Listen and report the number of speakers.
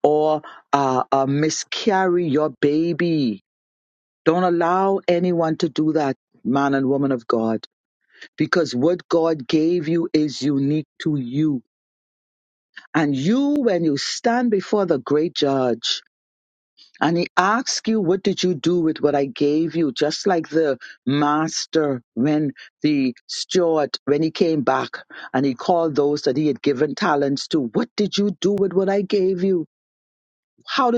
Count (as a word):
one